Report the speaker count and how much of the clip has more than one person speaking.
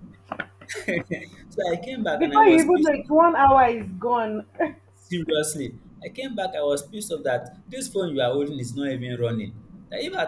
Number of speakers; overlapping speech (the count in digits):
2, about 8%